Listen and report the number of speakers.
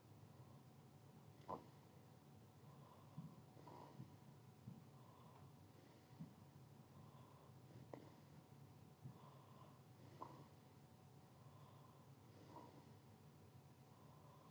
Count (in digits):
0